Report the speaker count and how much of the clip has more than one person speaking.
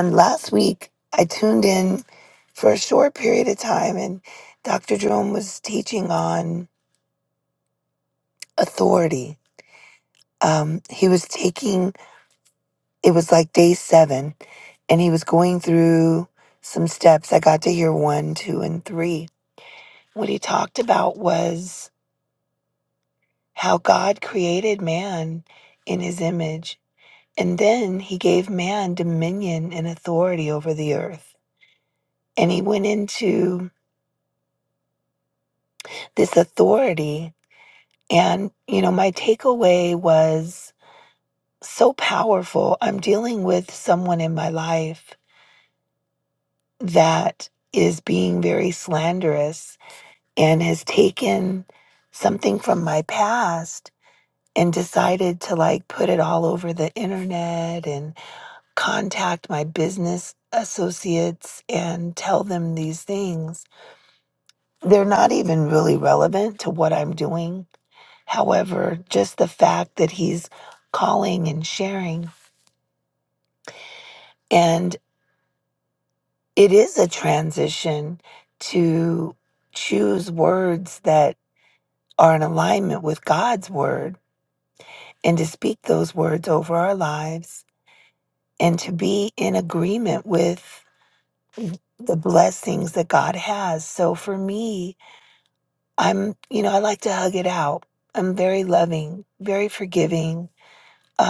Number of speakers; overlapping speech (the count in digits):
1, no overlap